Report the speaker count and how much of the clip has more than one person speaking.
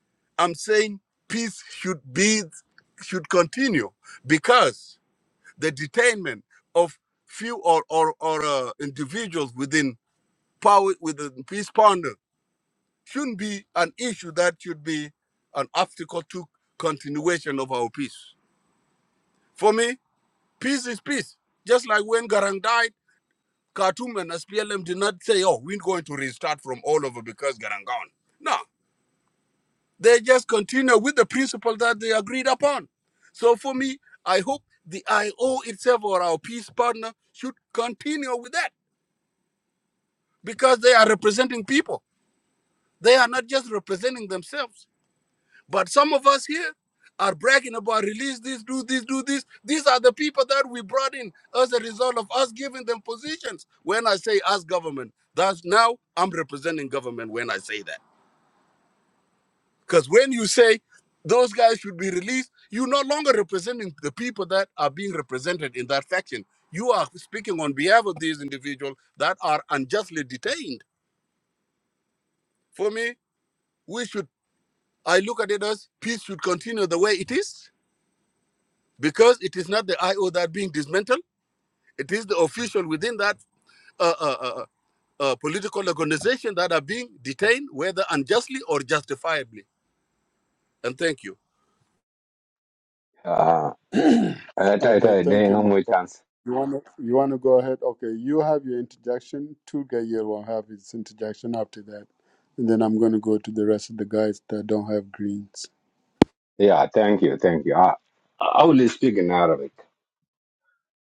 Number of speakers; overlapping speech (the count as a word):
three, about 1%